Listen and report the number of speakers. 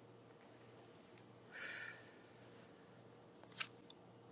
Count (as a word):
zero